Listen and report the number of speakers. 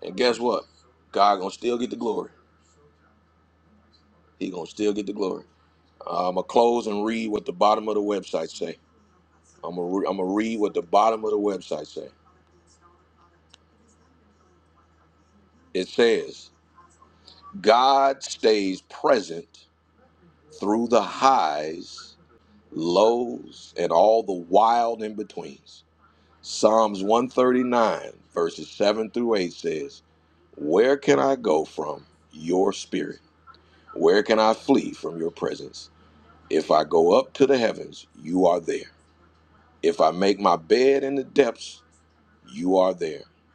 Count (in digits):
1